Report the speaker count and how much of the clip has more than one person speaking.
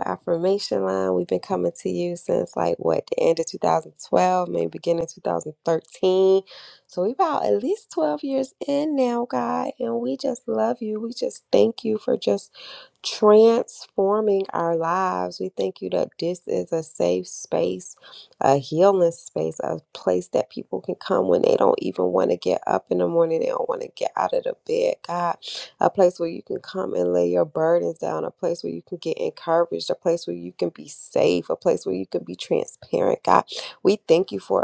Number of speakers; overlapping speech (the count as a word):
one, no overlap